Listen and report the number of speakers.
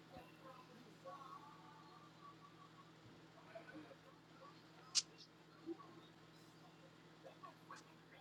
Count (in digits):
0